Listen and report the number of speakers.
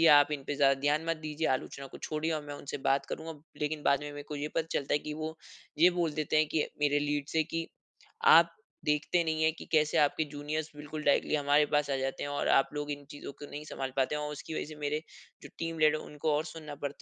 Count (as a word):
one